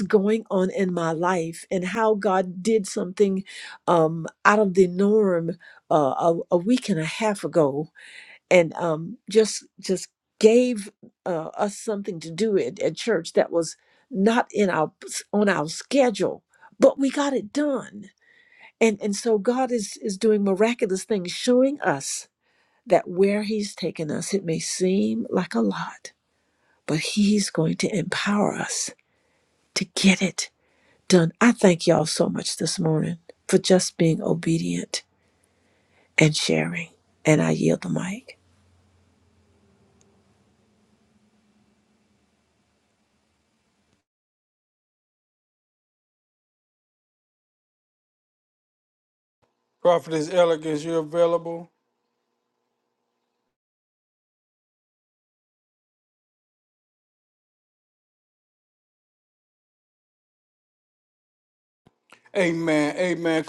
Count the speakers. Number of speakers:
2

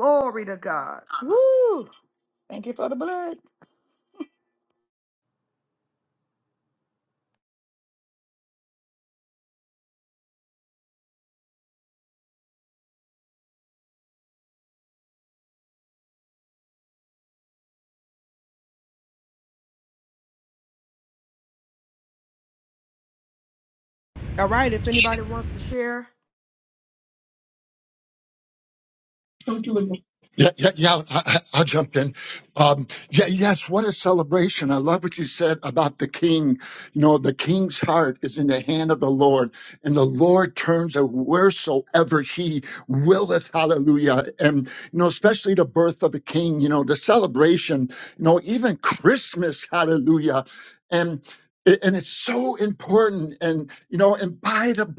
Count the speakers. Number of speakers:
3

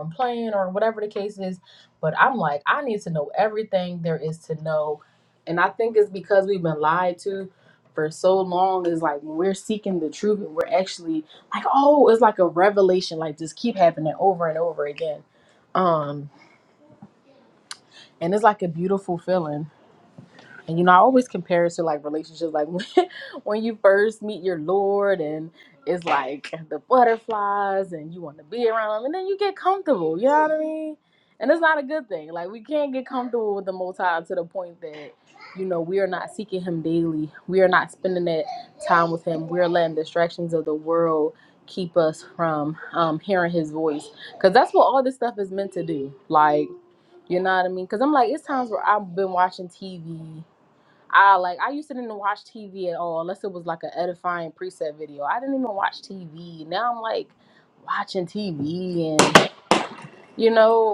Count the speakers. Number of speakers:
1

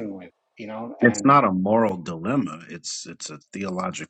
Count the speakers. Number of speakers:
2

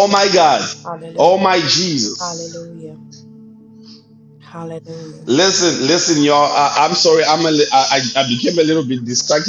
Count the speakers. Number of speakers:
2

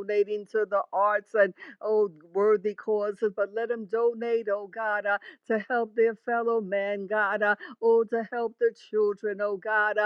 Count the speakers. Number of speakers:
1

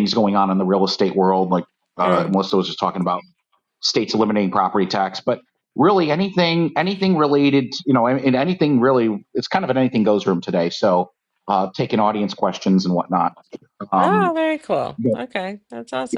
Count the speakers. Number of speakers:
2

